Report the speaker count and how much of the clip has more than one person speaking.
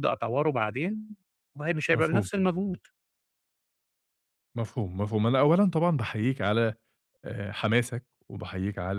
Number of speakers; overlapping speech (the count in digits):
2, about 4%